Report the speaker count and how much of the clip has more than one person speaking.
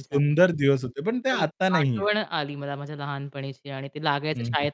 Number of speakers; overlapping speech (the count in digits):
2, about 28%